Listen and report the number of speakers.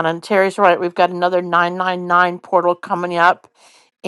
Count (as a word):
one